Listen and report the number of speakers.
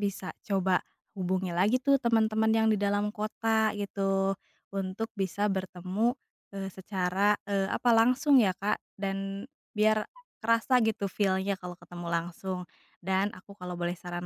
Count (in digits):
1